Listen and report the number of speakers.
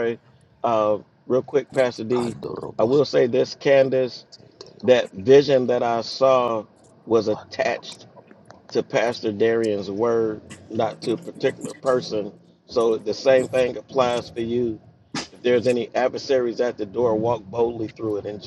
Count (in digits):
1